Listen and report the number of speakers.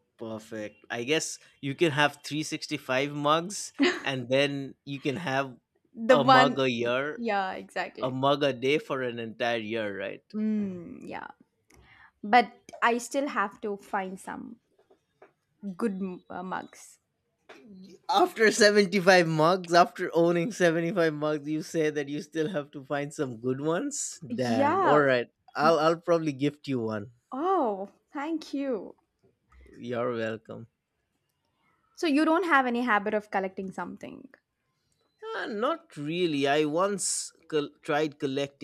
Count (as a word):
two